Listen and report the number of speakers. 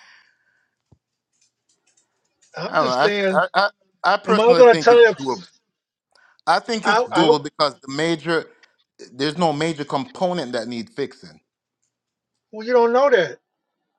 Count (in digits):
2